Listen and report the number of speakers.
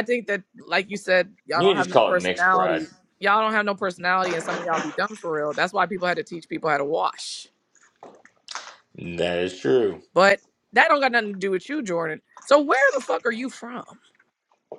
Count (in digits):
2